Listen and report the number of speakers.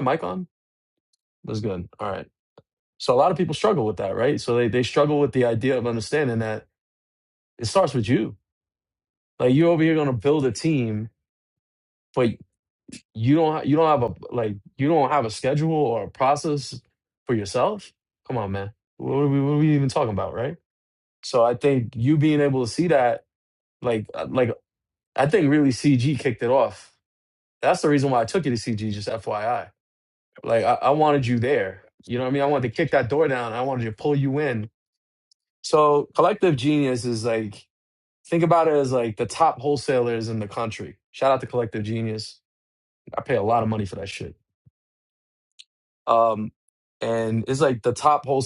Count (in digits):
1